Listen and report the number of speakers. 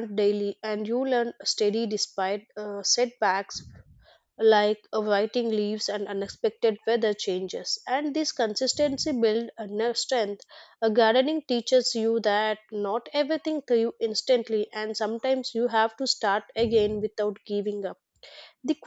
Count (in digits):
1